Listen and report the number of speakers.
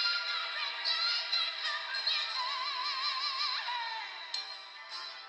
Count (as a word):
zero